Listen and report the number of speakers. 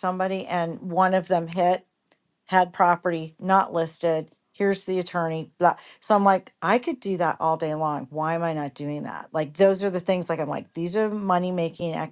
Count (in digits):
1